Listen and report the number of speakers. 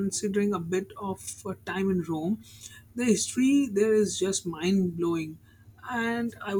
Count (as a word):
one